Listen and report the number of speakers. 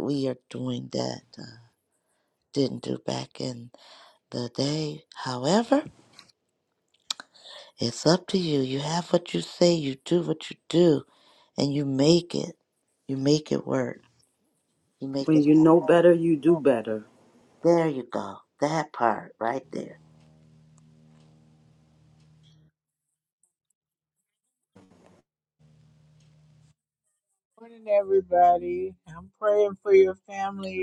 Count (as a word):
three